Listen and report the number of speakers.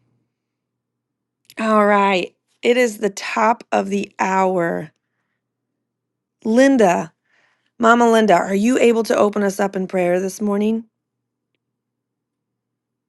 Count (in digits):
1